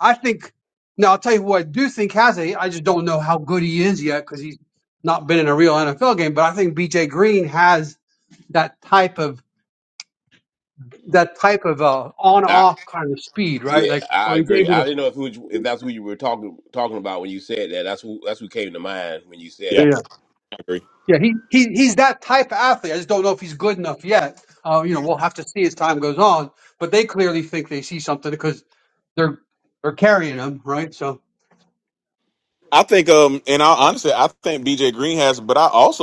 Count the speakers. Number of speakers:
3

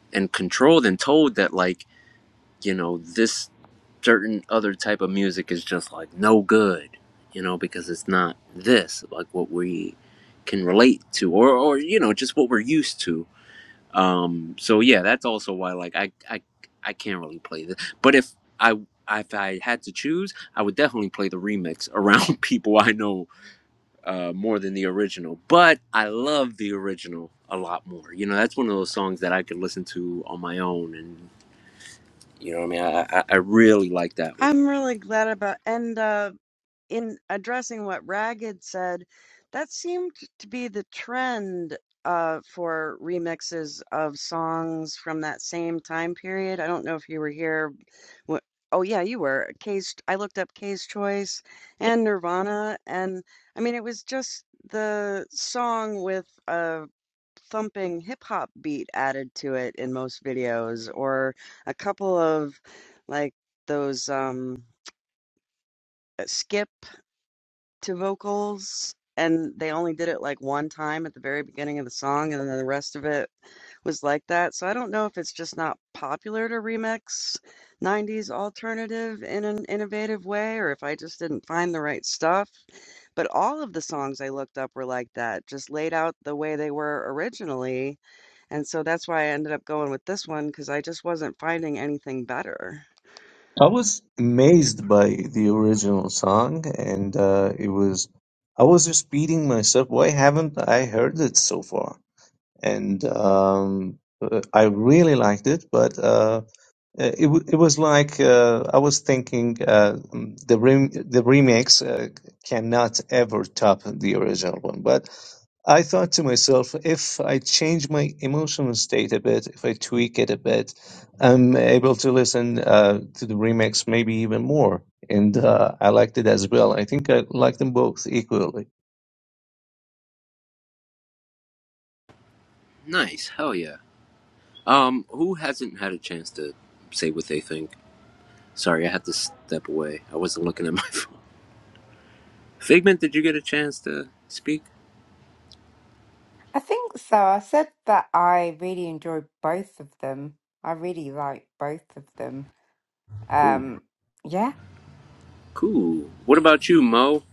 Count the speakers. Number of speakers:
4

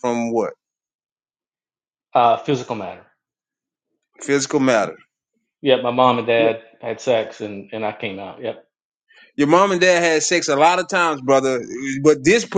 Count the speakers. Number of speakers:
2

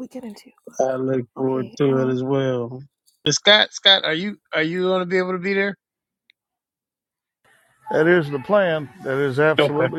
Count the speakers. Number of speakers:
3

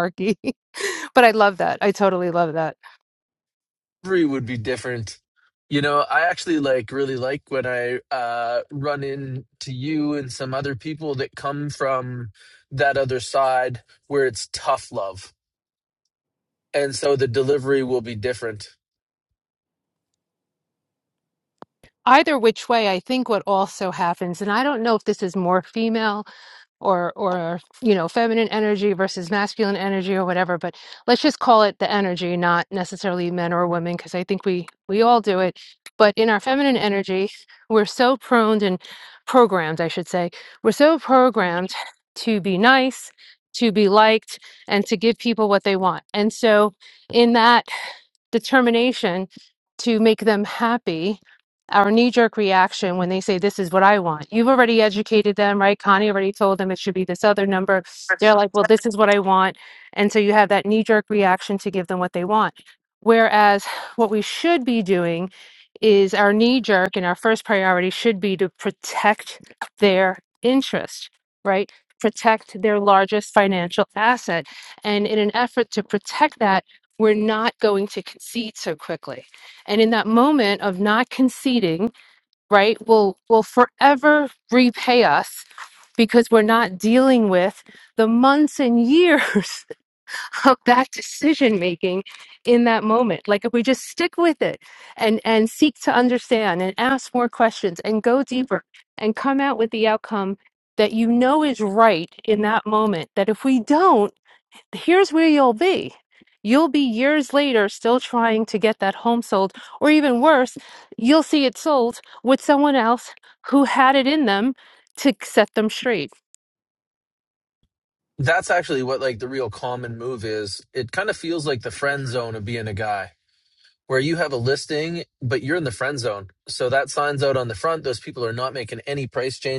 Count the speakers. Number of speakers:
2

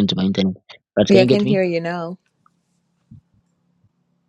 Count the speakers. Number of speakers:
2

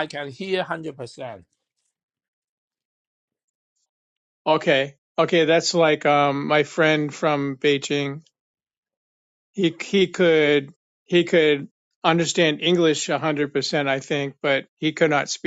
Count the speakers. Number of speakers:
2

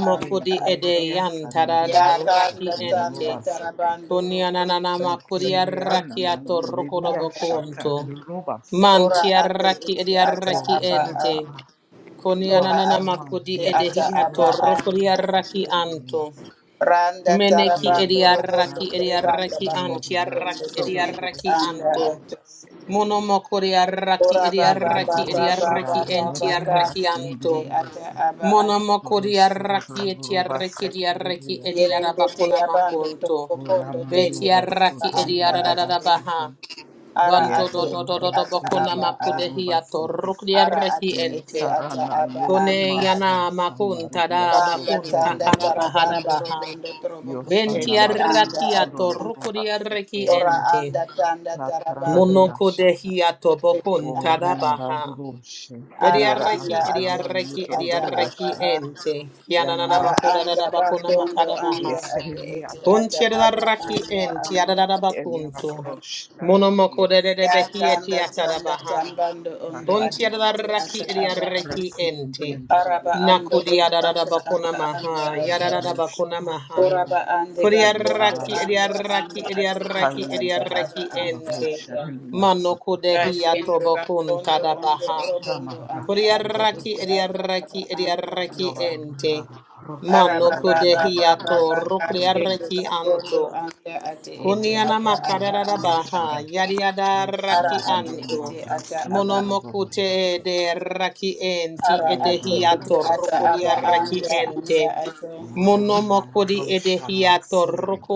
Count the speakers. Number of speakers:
3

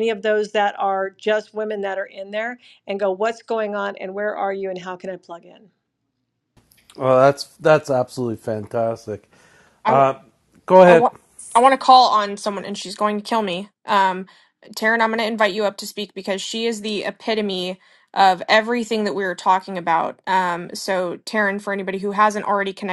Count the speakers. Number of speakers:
3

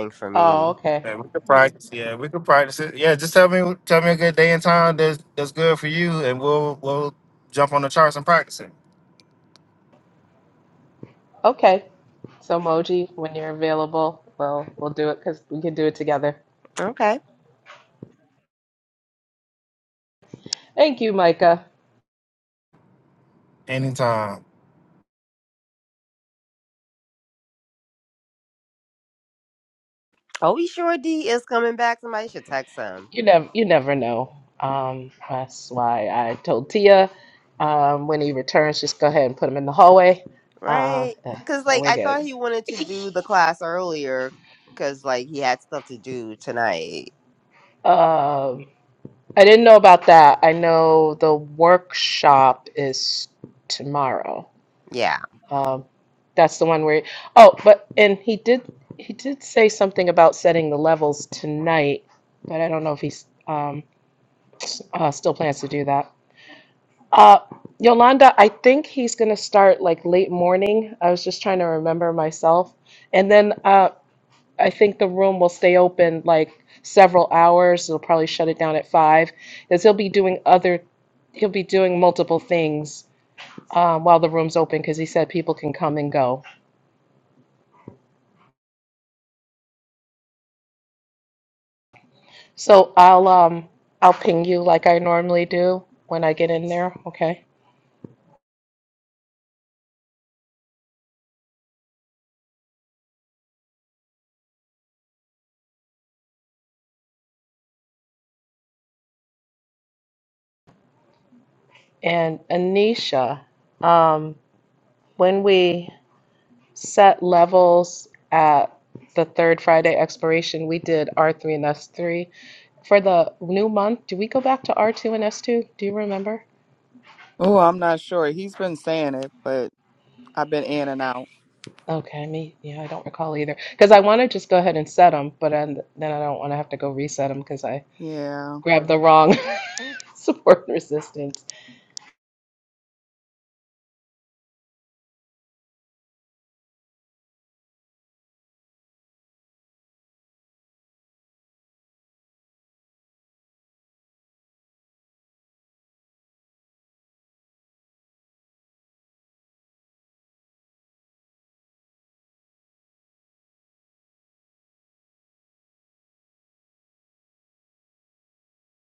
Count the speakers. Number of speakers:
4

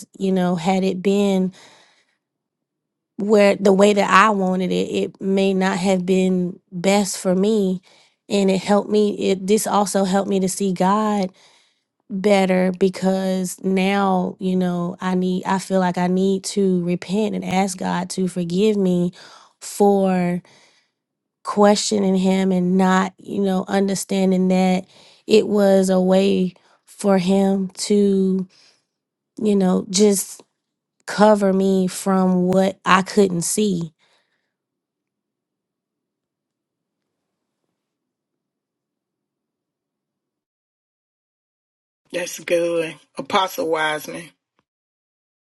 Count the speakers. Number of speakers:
2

